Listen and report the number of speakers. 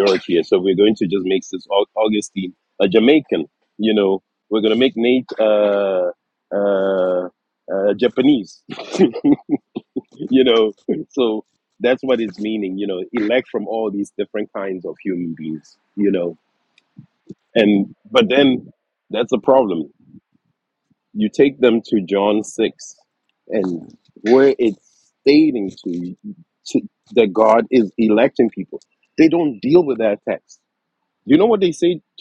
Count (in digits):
1